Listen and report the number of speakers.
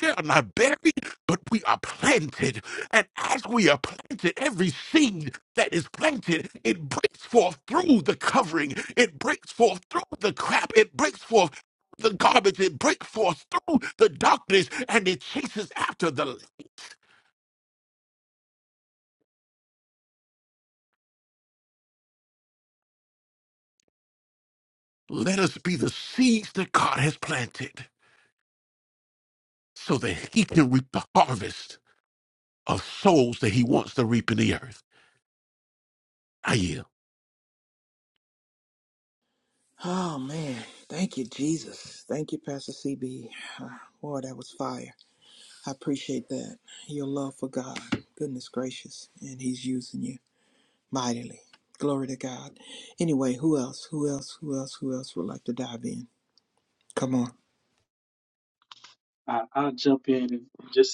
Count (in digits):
3